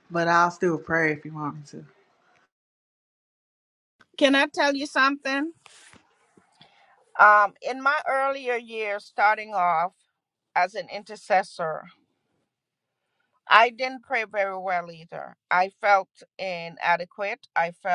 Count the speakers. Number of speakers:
two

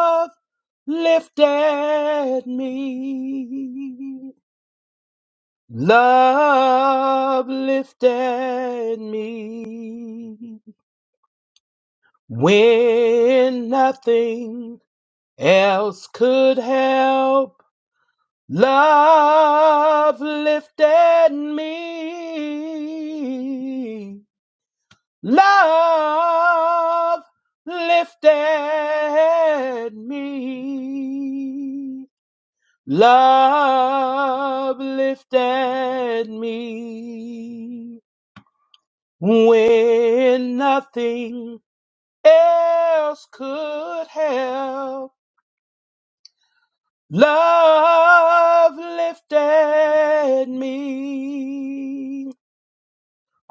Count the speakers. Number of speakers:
one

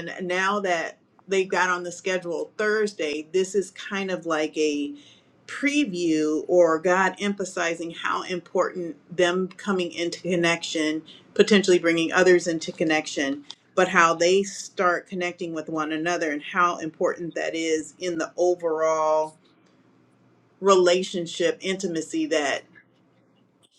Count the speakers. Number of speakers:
one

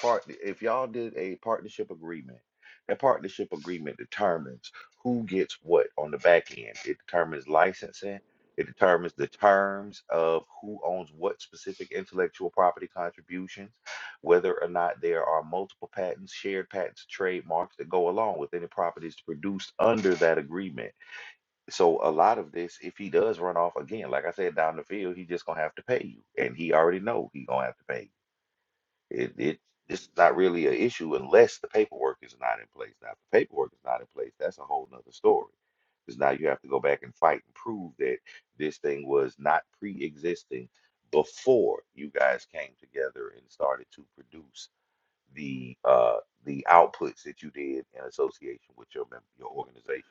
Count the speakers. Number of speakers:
one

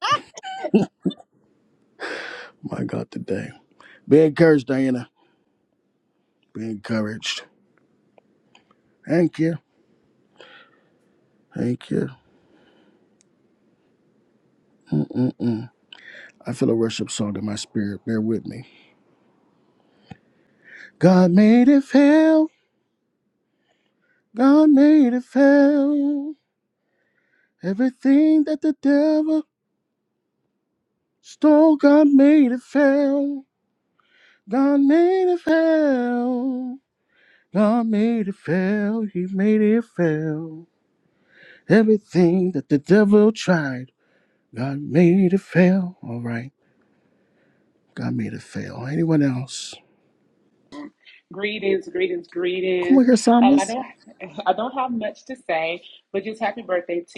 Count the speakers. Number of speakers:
two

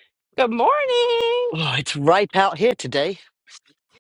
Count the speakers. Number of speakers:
two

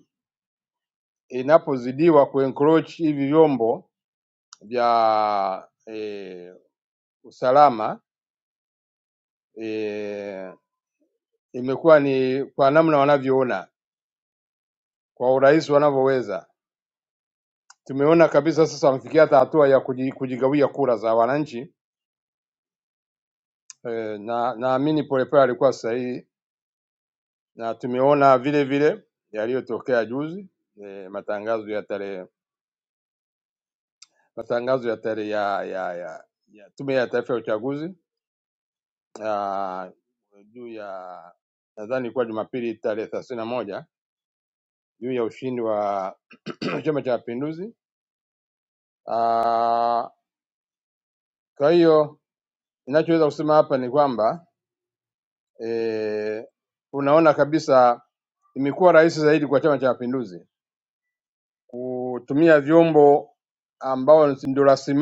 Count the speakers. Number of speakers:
one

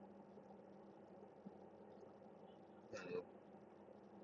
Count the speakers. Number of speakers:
zero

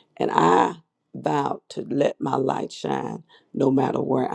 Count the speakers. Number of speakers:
one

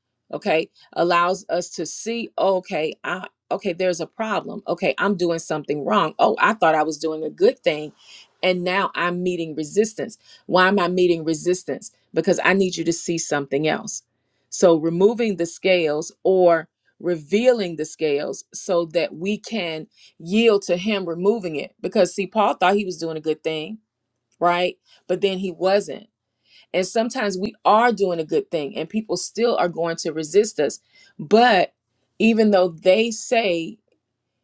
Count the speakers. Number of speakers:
one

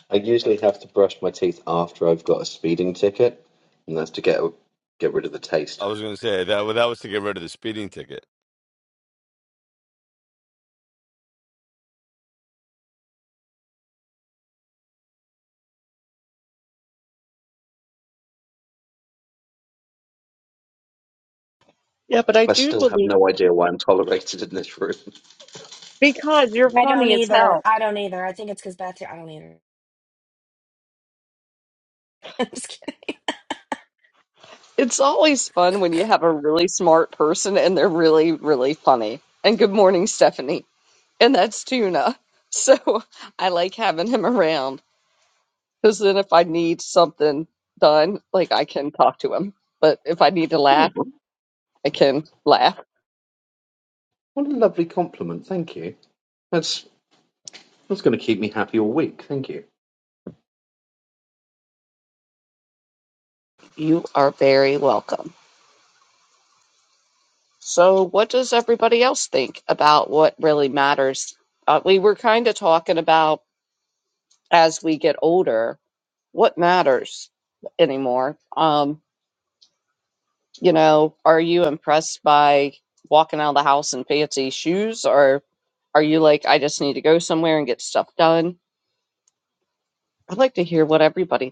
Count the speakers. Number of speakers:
four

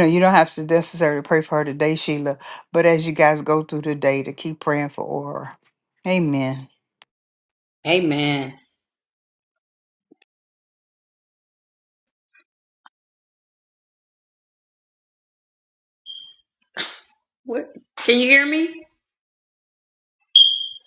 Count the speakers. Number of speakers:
two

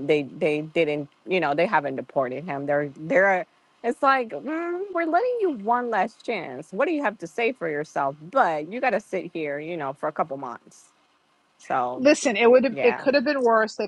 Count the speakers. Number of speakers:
two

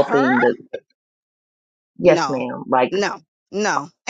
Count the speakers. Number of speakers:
two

